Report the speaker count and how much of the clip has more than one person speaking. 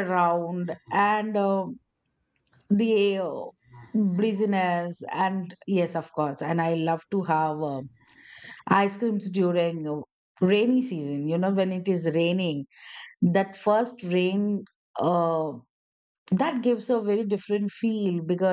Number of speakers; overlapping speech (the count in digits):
1, no overlap